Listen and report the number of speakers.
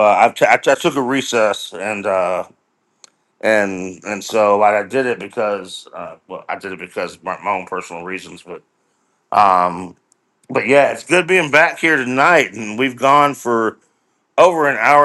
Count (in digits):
1